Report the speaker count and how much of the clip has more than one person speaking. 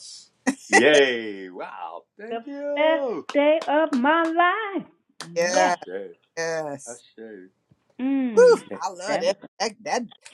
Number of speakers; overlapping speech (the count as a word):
three, about 15%